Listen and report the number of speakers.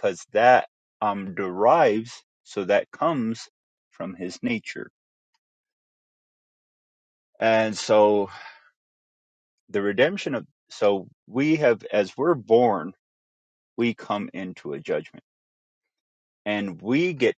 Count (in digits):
1